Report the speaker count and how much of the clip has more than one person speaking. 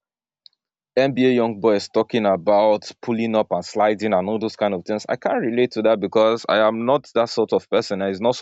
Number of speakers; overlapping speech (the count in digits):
1, no overlap